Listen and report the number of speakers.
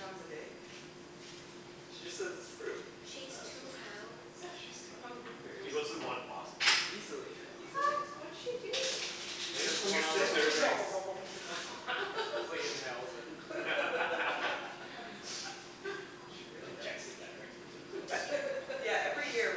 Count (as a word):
four